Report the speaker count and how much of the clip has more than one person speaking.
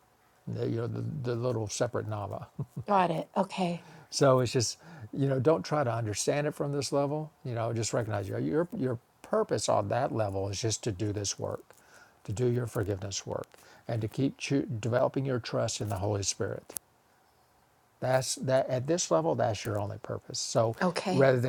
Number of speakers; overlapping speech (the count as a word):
two, about 1%